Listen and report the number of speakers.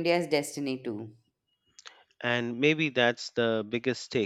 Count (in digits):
2